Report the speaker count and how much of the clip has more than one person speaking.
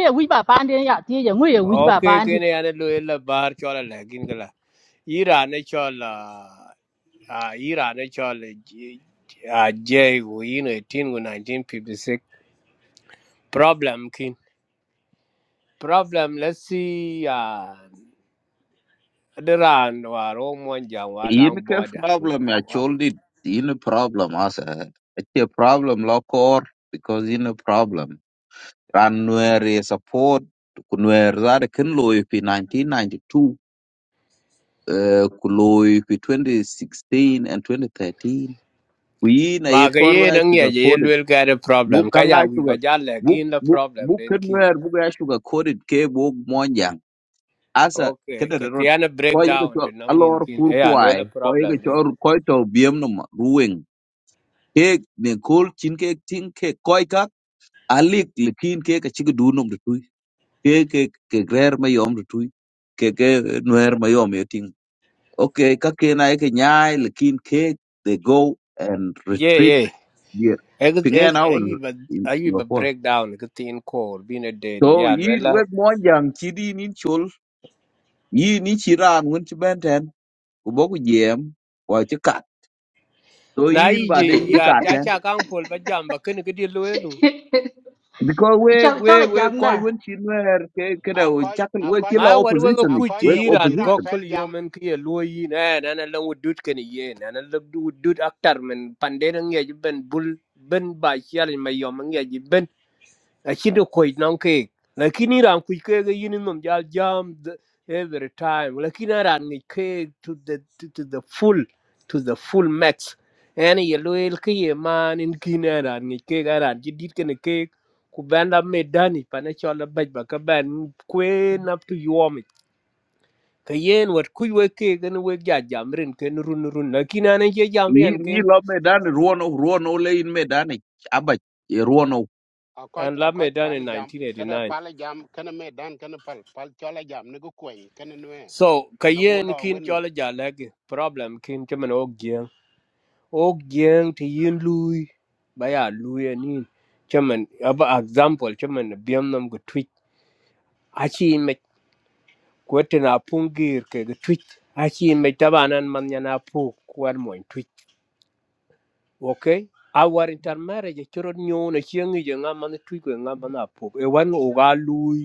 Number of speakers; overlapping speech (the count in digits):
4, about 12%